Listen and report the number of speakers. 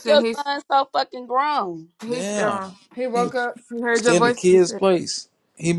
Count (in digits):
3